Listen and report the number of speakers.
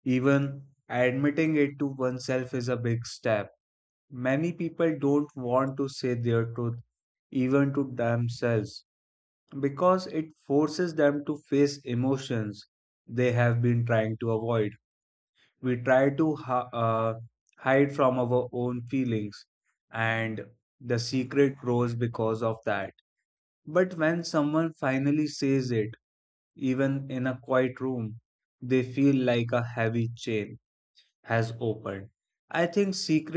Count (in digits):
1